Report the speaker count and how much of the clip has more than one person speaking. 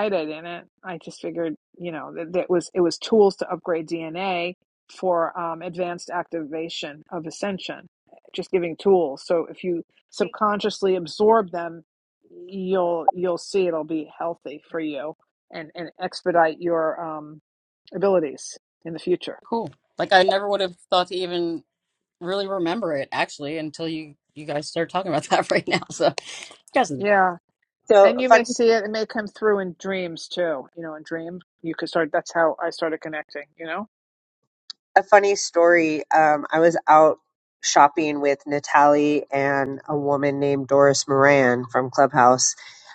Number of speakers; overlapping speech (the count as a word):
three, about 1%